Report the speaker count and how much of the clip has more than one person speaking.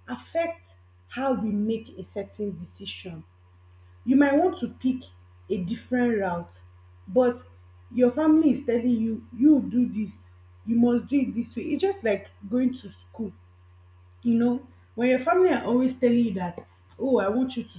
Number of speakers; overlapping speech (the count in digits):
1, no overlap